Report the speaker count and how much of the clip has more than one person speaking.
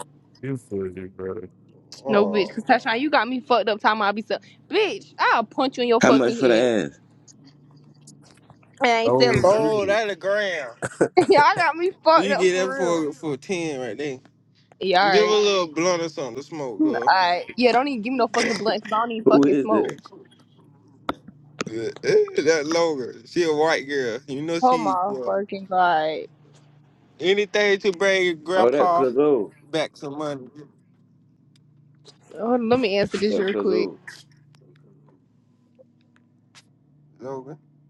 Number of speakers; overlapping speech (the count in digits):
4, about 16%